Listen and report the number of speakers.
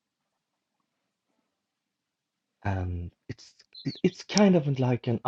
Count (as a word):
one